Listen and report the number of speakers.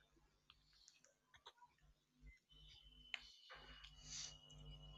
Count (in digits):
0